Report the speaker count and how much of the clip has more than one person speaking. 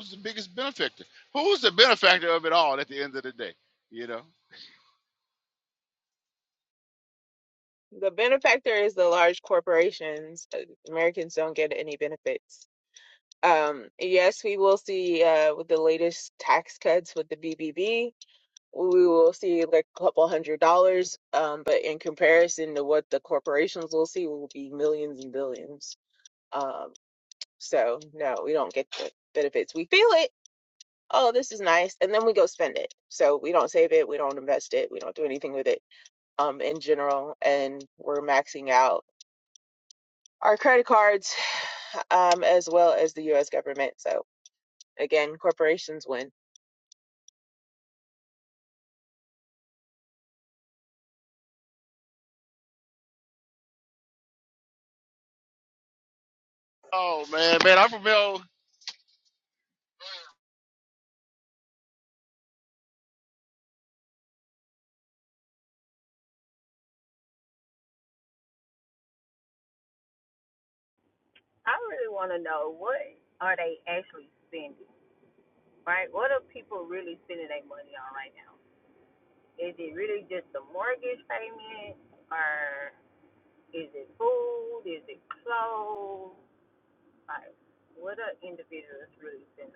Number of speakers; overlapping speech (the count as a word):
three, no overlap